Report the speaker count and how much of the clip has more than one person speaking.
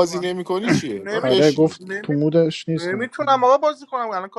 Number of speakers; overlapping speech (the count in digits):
3, about 34%